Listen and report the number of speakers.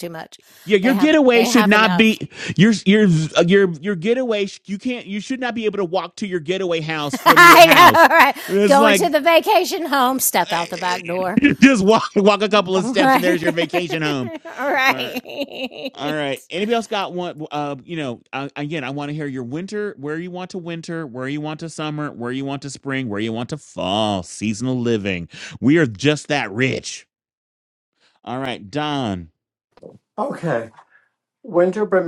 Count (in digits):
3